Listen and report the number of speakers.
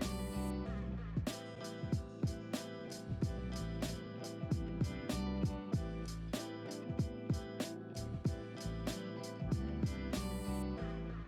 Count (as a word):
zero